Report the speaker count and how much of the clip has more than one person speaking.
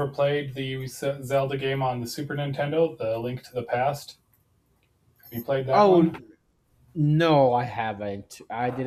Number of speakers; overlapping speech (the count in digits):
2, about 6%